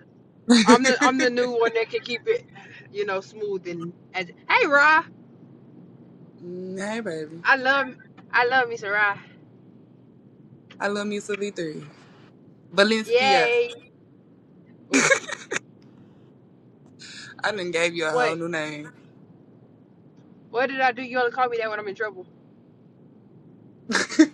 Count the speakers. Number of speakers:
2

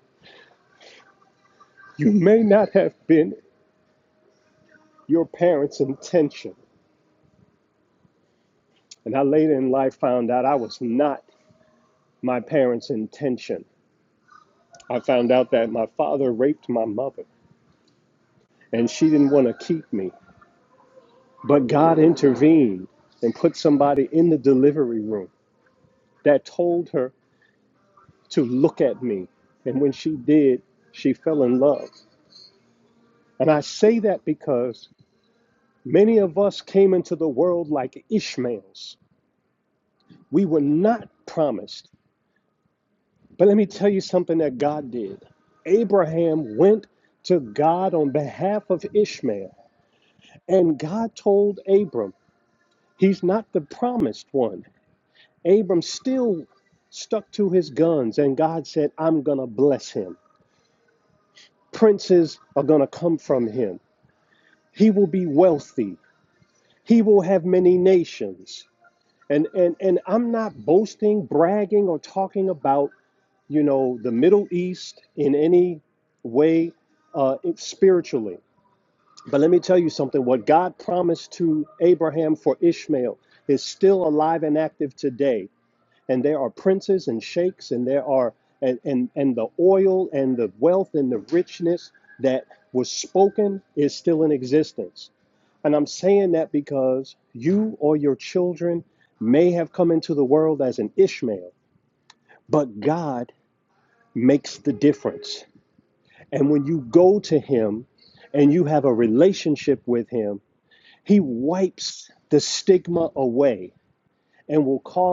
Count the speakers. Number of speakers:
1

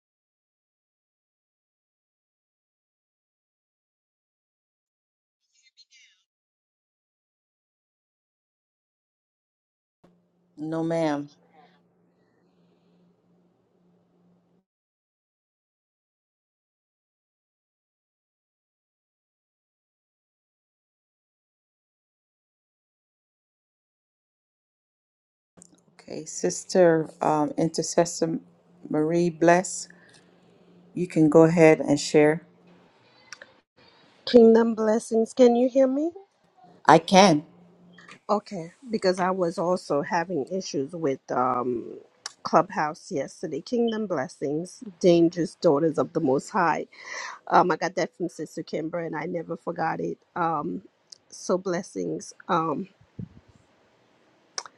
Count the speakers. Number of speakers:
2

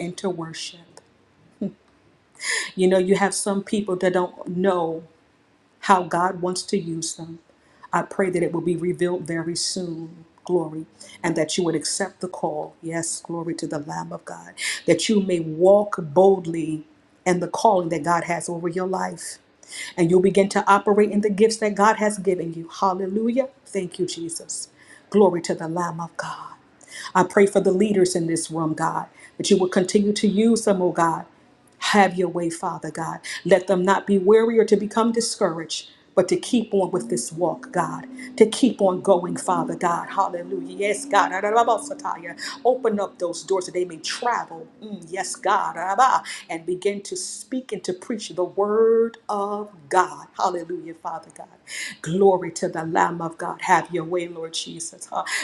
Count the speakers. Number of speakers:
1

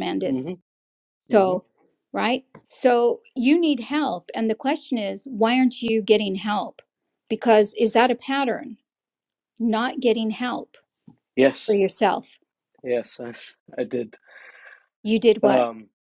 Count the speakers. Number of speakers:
2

